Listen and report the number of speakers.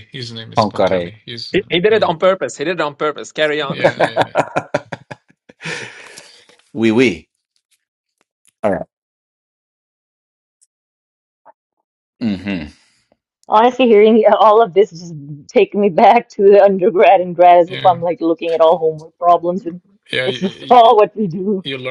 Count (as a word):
four